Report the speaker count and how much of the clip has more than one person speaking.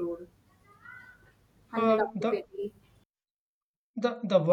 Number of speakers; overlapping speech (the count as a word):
two, about 15%